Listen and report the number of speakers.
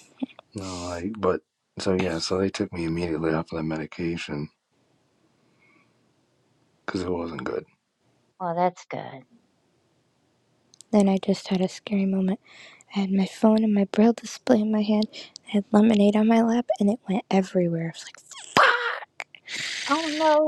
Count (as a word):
three